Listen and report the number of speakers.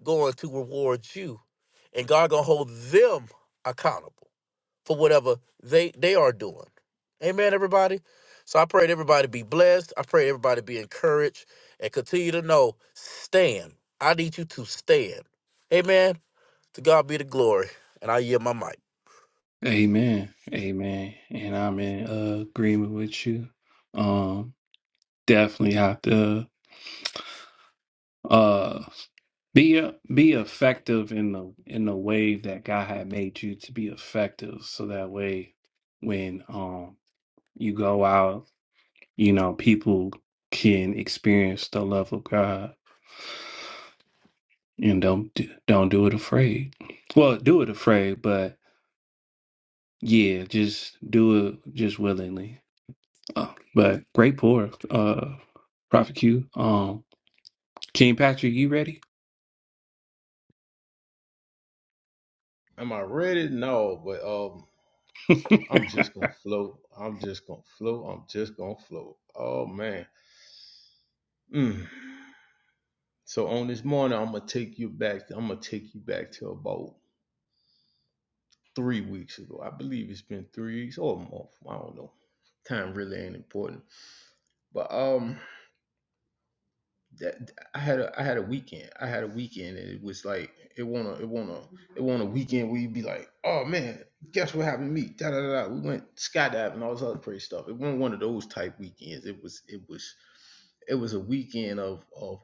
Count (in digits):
3